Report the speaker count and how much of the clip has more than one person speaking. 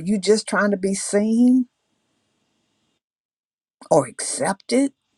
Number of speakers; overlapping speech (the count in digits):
1, no overlap